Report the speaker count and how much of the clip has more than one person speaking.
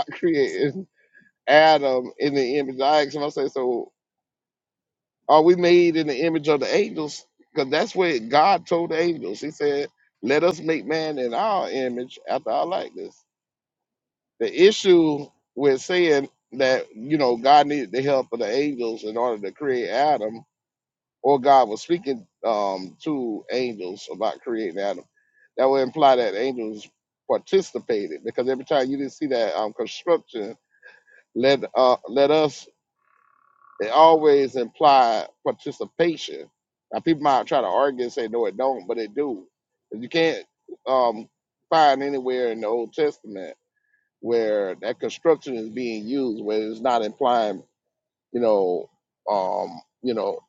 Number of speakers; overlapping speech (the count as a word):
one, no overlap